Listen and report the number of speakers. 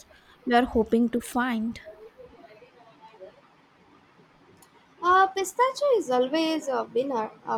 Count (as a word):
two